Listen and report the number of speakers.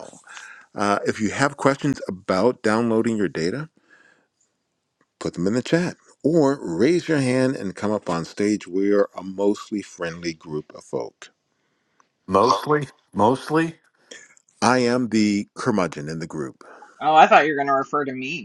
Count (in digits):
3